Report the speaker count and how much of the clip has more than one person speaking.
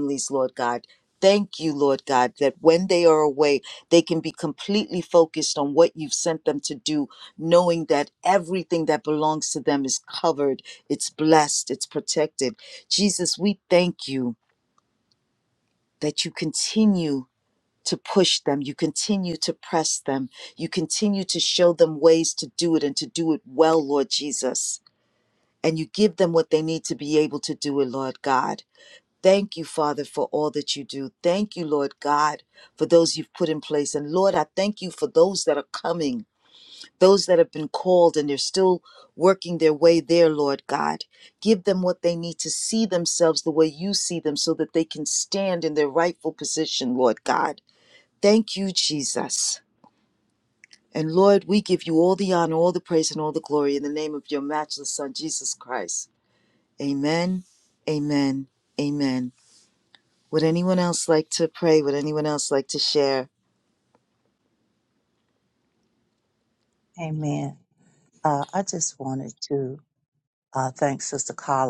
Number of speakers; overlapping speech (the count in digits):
2, no overlap